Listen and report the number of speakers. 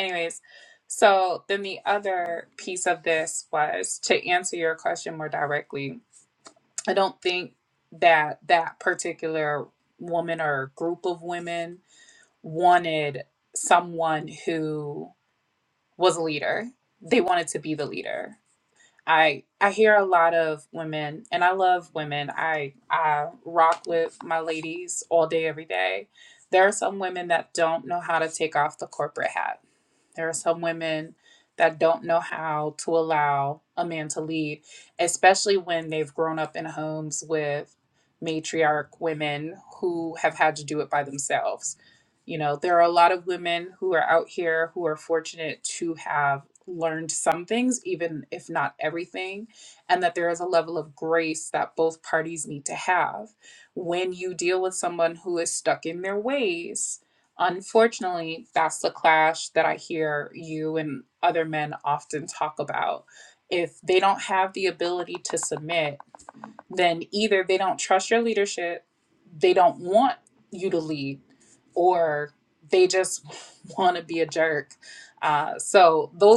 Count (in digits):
1